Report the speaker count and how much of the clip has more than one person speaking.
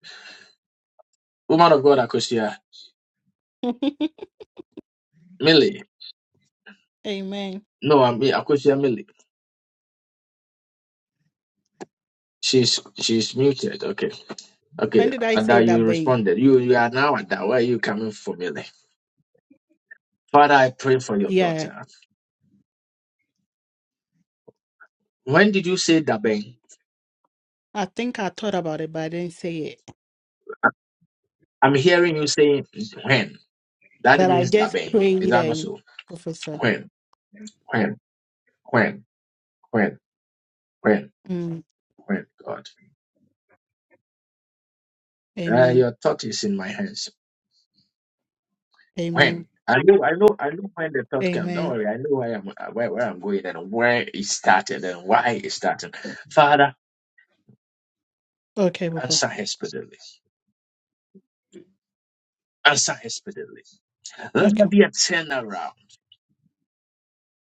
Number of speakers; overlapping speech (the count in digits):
2, about 7%